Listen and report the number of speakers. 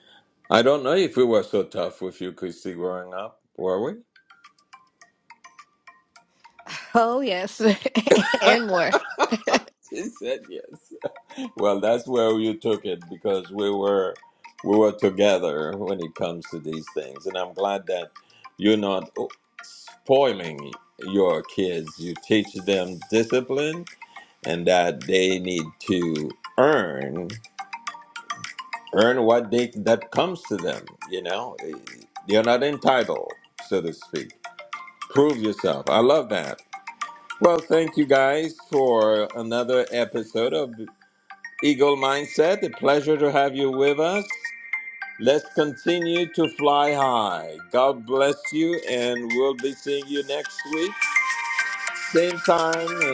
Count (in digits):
2